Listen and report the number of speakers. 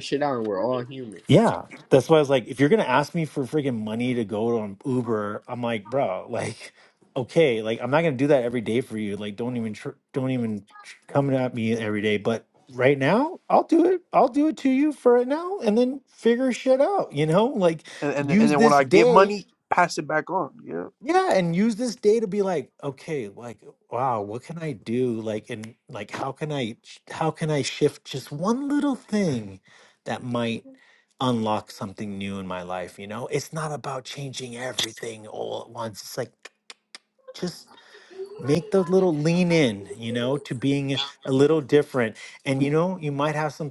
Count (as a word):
three